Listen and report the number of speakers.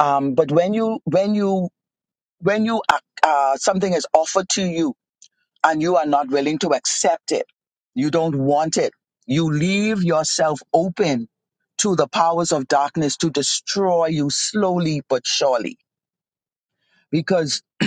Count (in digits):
1